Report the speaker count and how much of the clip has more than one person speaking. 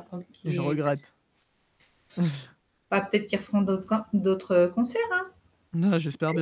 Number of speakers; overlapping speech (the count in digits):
2, about 7%